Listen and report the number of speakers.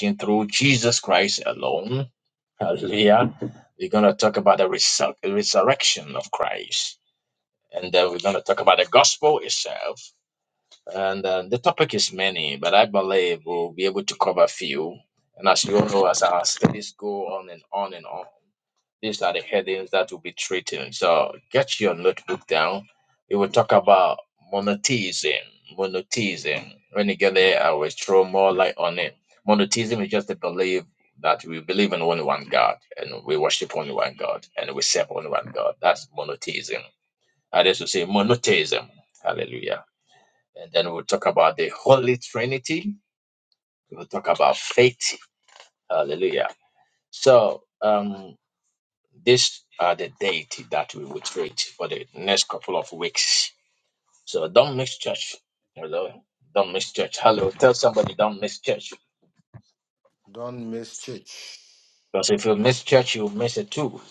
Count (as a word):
two